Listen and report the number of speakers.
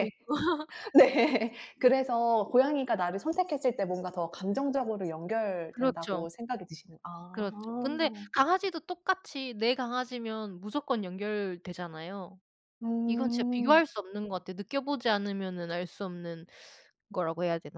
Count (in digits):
2